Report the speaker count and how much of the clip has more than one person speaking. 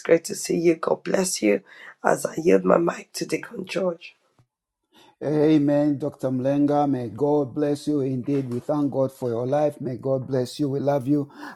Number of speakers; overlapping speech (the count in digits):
2, no overlap